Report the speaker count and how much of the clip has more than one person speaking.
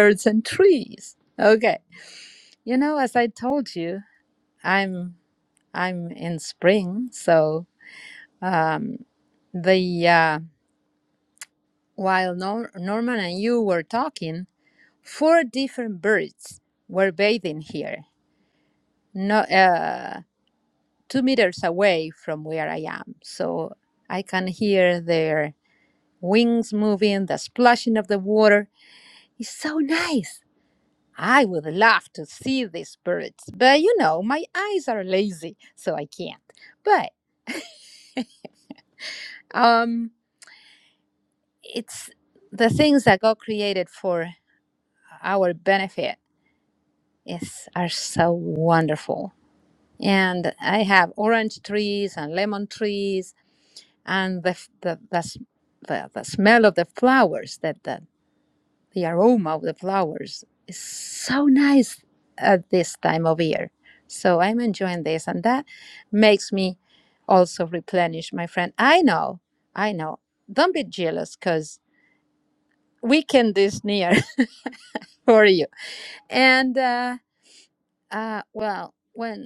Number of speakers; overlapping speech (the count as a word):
one, no overlap